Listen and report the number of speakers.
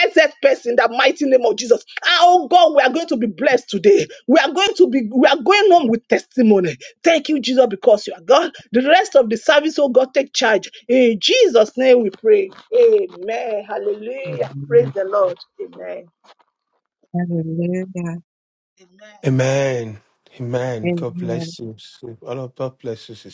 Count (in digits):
3